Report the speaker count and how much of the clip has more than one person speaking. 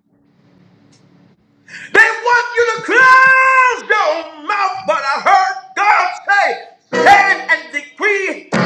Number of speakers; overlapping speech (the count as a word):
one, no overlap